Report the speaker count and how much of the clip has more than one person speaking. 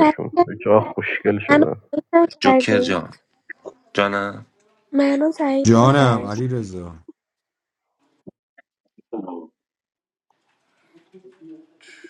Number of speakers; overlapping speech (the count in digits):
4, about 16%